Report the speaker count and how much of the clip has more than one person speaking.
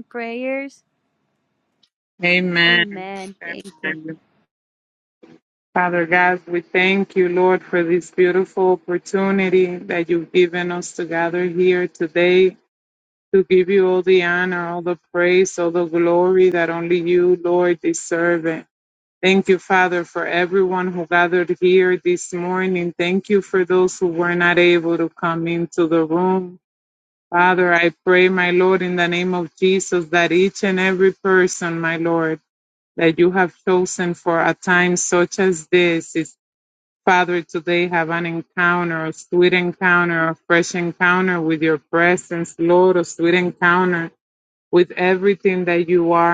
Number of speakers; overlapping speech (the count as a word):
two, about 1%